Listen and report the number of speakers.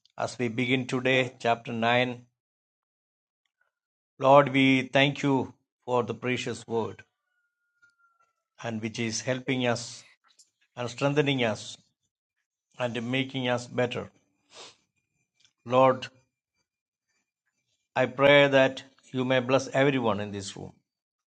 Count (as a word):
one